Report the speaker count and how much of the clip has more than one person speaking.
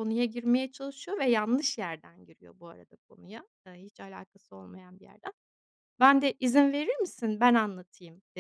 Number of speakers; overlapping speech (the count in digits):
1, no overlap